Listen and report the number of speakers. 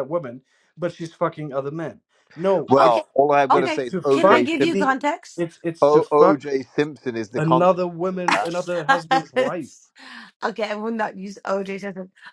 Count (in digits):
3